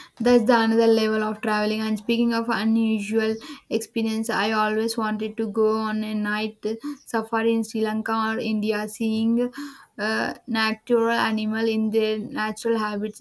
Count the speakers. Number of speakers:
one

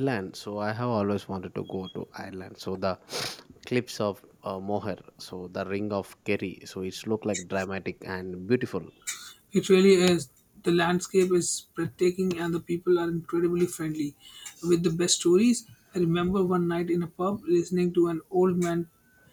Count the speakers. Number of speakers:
two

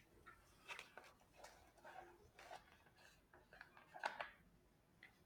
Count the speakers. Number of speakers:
zero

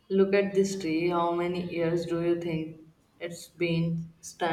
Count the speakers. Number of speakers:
one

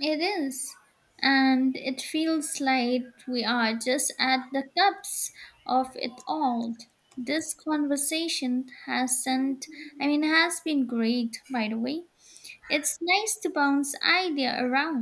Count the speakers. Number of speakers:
one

